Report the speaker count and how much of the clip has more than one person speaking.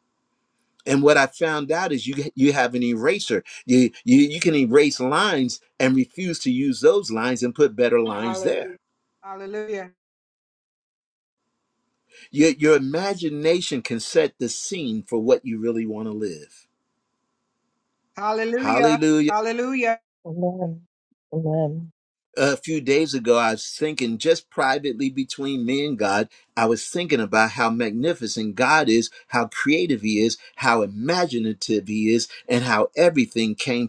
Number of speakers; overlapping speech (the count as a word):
three, about 3%